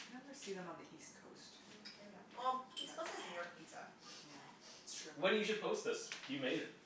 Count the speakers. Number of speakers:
three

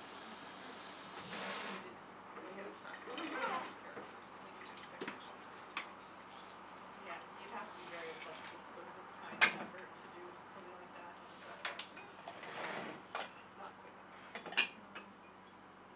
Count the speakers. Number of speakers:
two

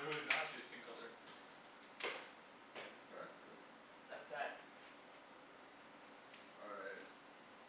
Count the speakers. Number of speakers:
two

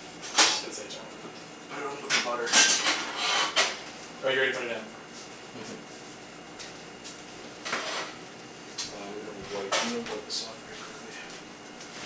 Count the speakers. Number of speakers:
two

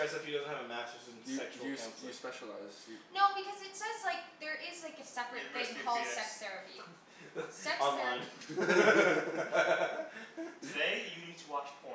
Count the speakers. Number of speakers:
four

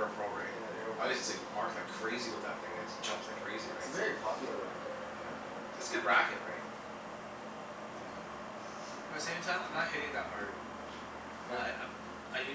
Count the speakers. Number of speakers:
three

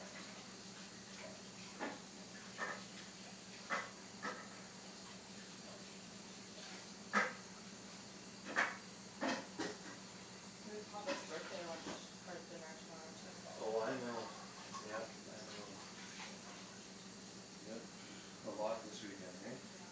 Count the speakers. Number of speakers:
two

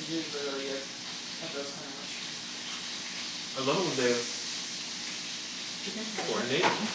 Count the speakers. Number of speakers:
two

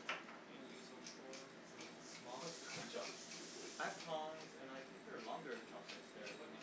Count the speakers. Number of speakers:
two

